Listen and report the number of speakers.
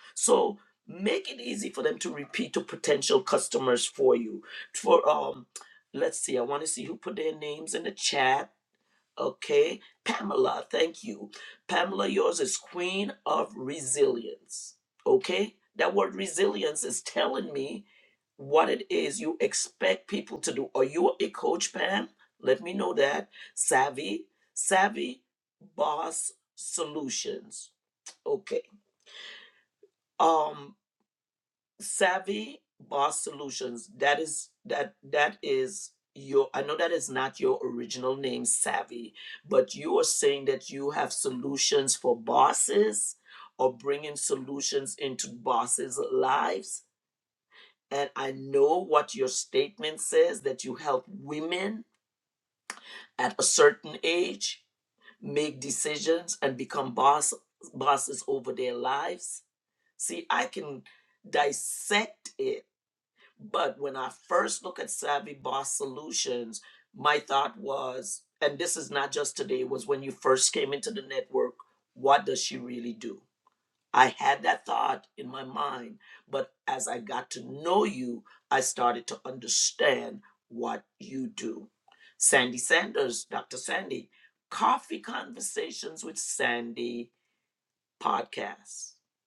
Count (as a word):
one